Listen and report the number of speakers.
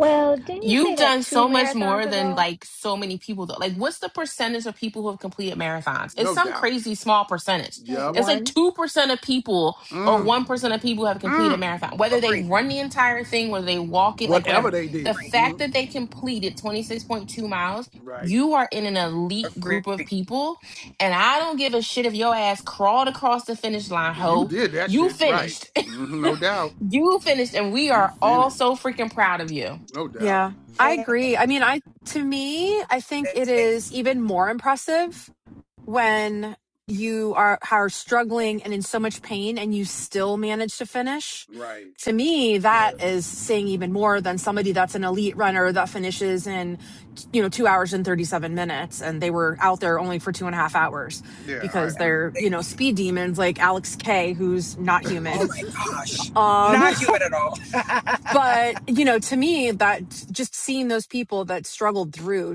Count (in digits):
5